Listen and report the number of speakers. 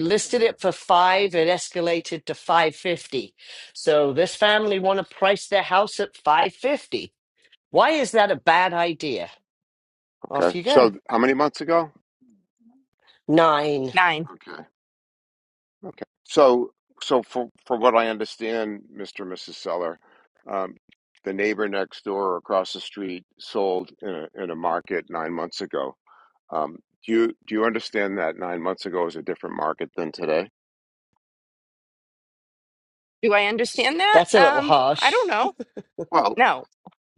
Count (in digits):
3